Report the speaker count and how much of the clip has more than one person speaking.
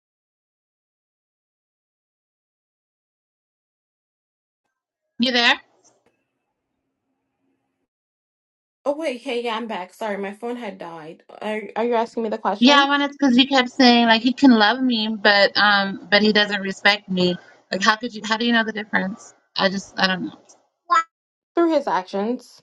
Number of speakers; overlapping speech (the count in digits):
2, about 1%